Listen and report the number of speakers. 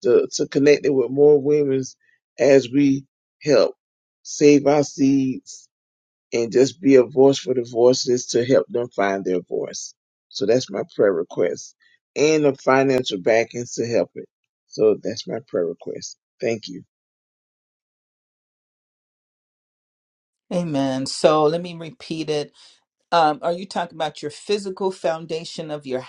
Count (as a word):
two